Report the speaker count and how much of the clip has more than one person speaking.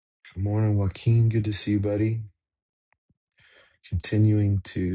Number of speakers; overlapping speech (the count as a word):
one, no overlap